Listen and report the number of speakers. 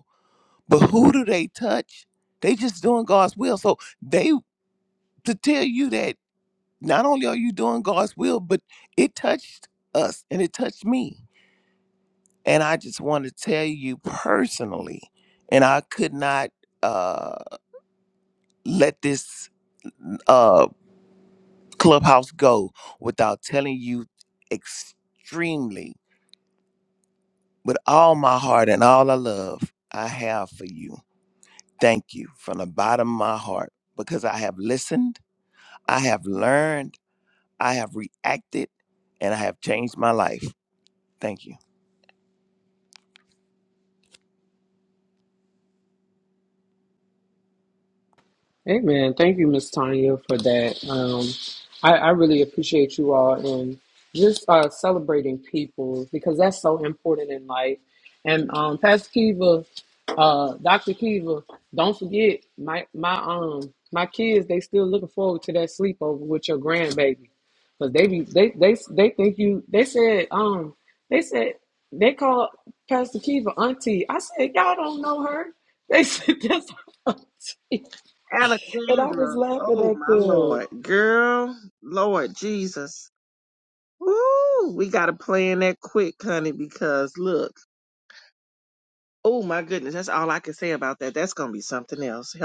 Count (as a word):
three